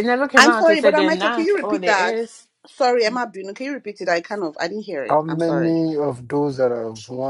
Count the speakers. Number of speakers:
3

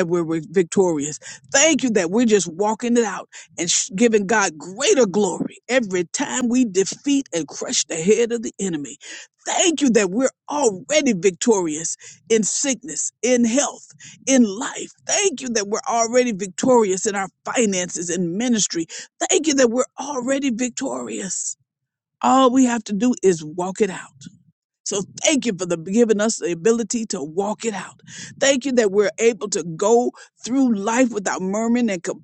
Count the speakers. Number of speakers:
1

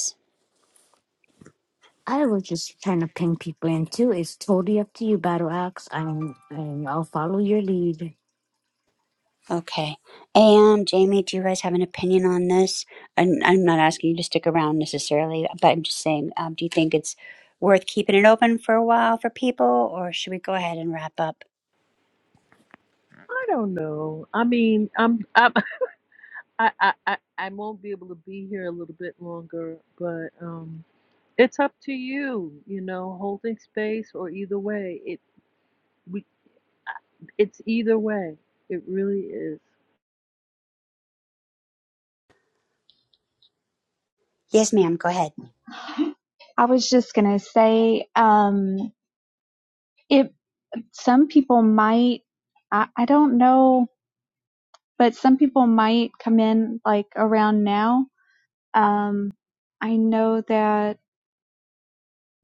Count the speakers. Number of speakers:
4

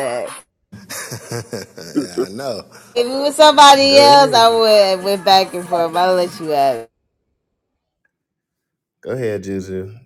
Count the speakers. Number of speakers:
3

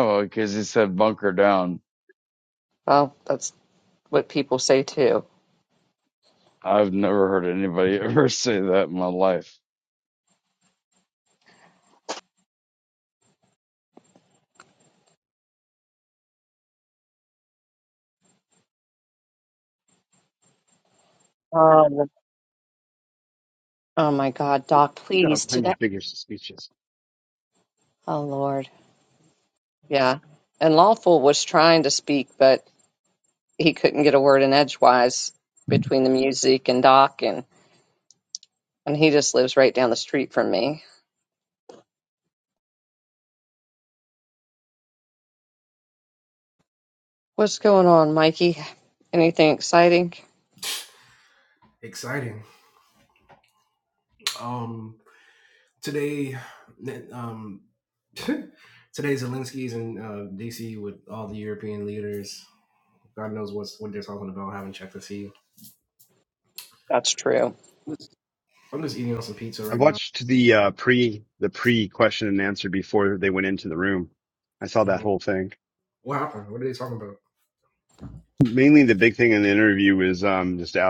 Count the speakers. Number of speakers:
4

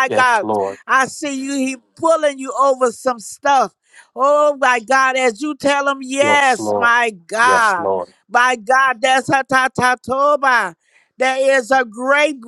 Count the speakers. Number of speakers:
2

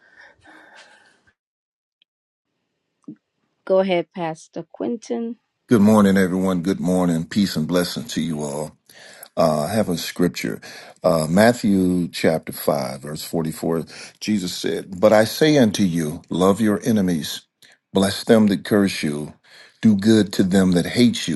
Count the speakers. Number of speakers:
2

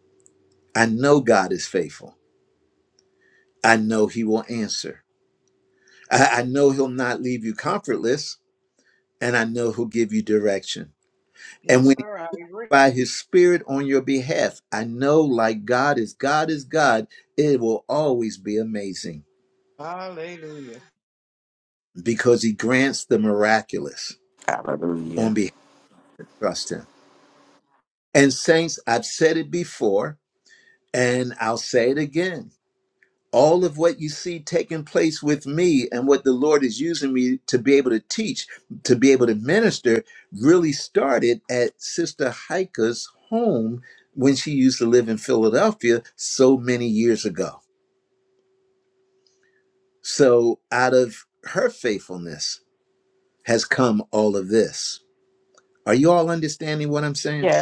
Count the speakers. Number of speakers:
3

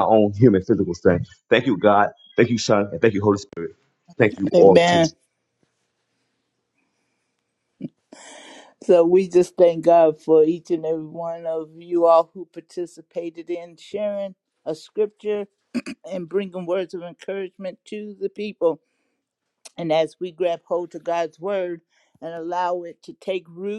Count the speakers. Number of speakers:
2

